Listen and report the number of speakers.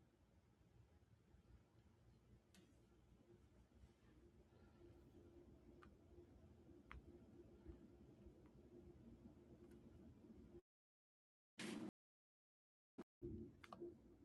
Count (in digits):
0